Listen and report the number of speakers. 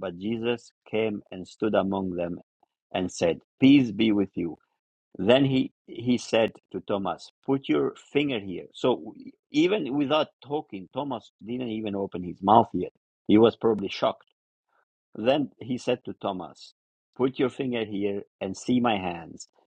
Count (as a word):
one